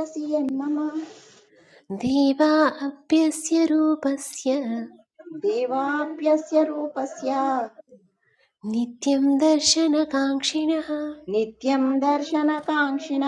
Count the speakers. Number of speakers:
2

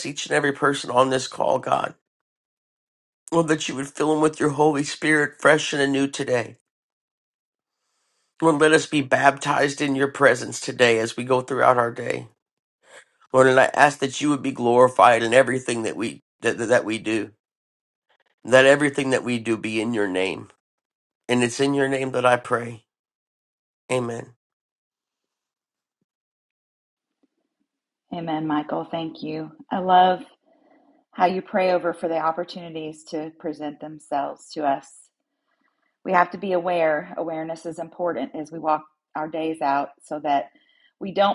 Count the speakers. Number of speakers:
2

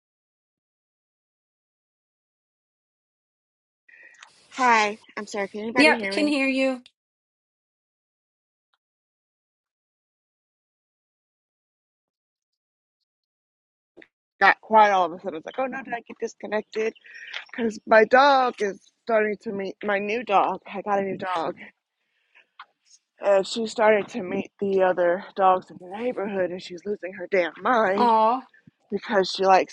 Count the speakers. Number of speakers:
2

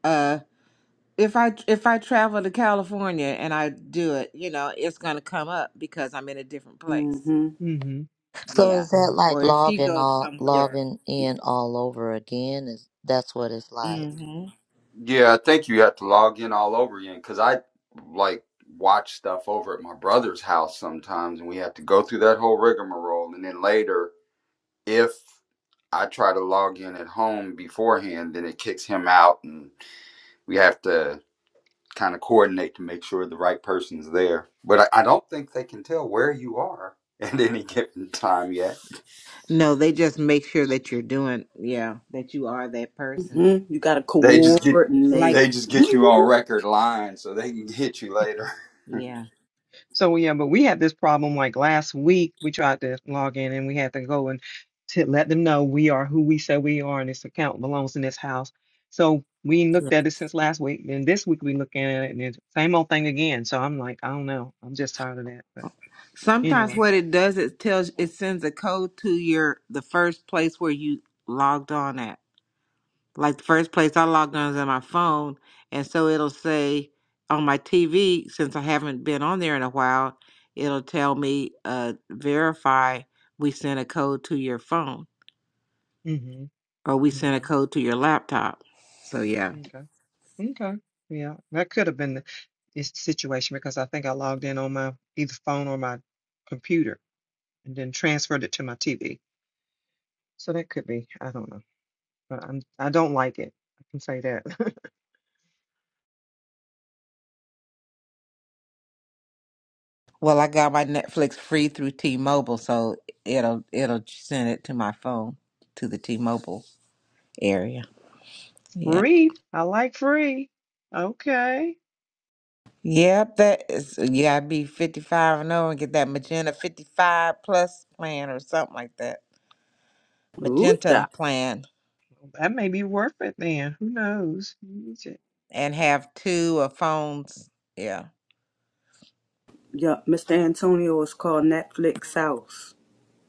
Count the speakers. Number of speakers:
5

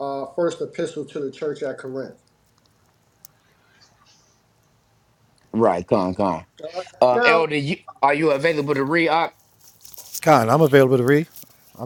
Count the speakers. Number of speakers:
3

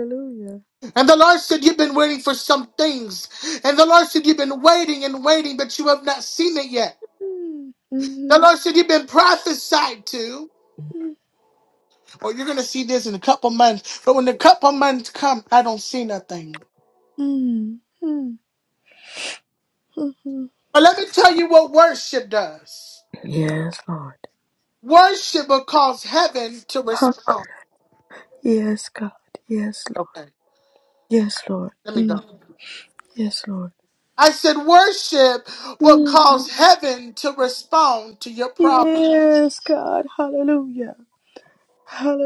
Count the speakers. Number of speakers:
2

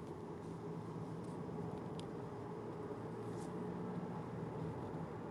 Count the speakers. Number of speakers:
0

